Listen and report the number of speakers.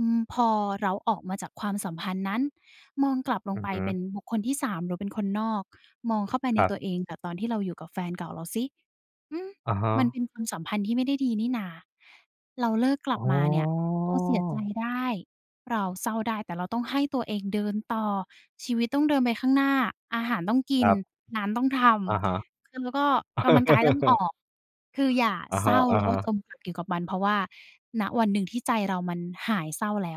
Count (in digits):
2